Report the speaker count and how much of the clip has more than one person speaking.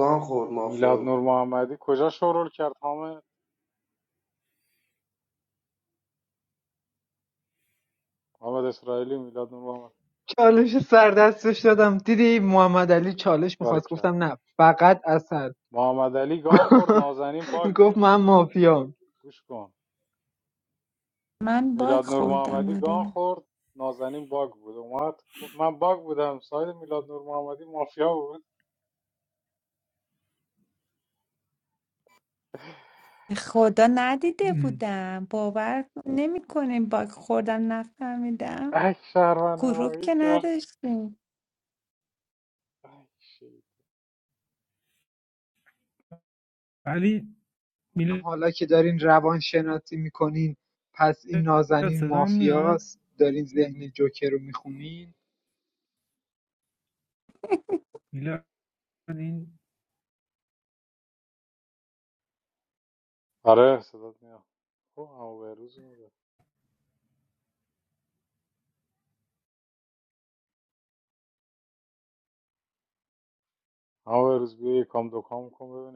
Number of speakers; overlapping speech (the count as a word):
five, about 6%